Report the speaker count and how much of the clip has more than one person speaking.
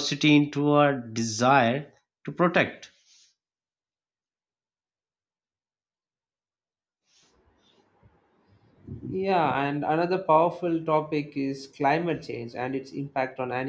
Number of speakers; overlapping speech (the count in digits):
2, no overlap